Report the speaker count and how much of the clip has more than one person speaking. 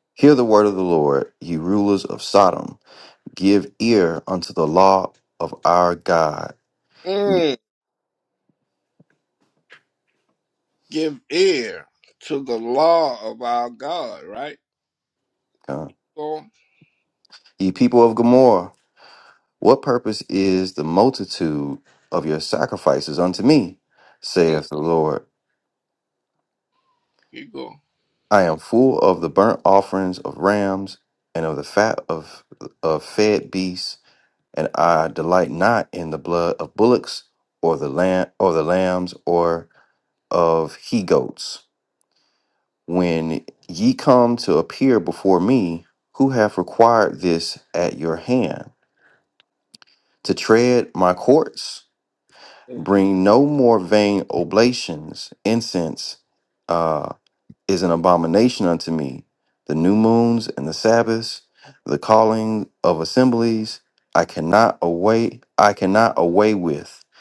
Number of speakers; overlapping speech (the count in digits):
2, under 1%